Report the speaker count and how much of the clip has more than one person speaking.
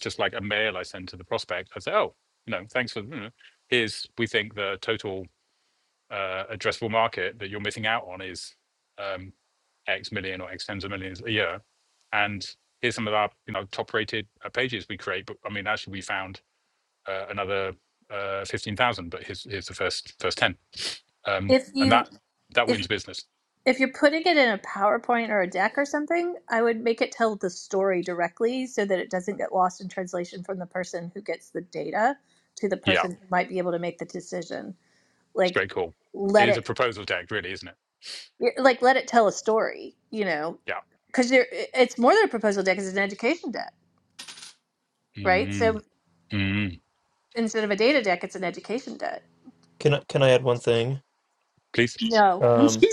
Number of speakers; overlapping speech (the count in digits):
3, about 4%